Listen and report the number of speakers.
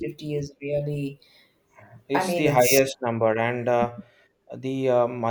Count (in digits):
2